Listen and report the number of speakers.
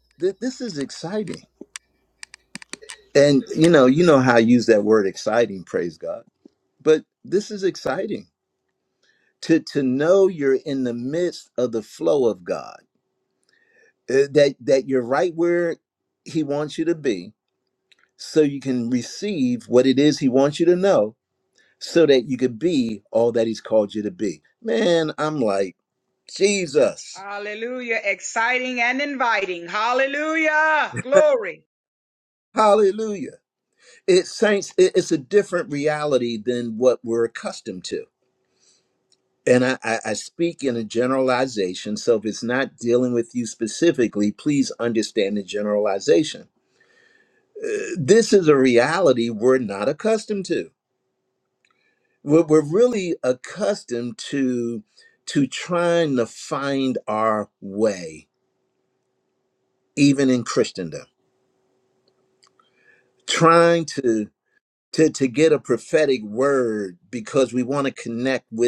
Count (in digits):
2